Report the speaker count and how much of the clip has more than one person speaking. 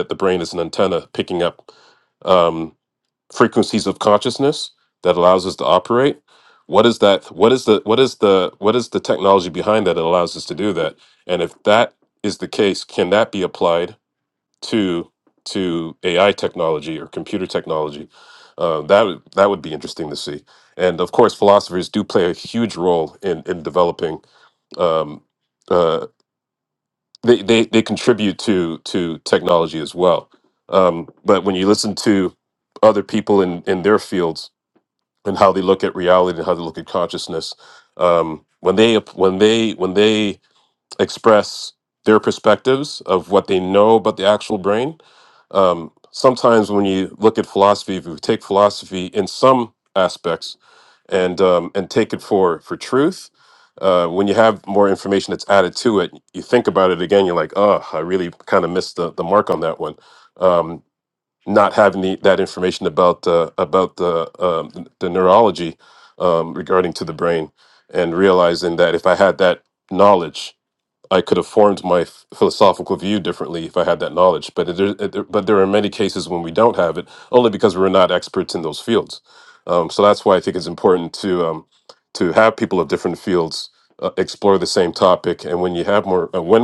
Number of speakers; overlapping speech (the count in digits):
1, no overlap